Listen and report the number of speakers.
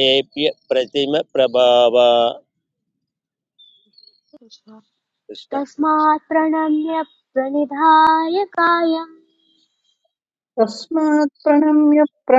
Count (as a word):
three